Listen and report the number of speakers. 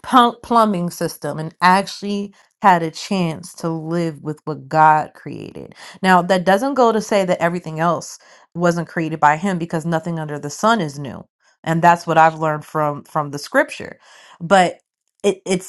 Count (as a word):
one